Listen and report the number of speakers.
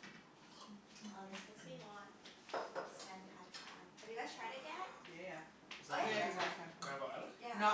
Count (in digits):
3